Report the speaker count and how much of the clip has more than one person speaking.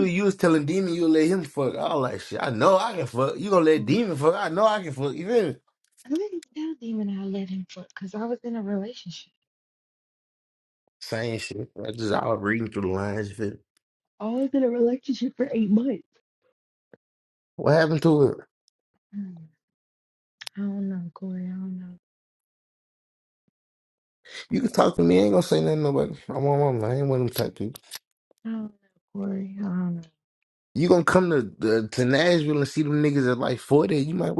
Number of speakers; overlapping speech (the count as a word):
two, about 1%